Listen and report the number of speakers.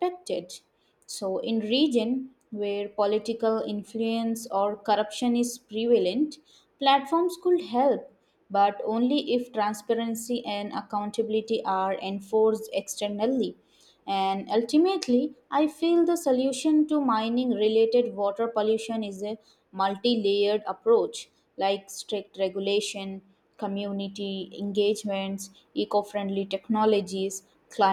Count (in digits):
1